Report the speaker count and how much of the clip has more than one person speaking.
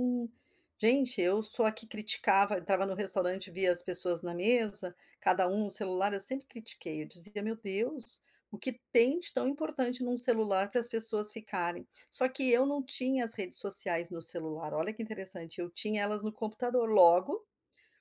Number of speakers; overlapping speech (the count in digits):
1, no overlap